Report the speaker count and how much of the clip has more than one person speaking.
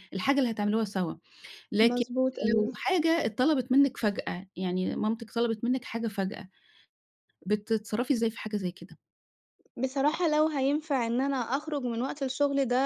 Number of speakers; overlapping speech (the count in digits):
2, about 4%